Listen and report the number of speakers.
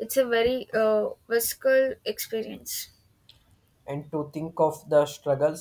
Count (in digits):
2